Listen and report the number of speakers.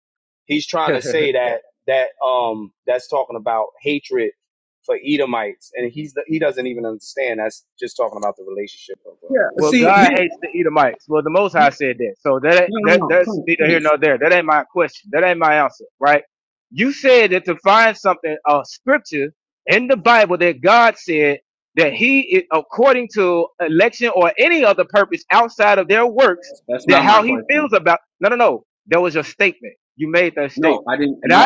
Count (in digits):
3